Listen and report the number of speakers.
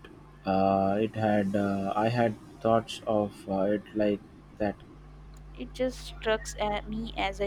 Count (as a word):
two